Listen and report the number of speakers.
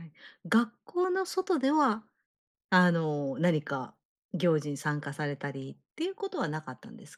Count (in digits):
1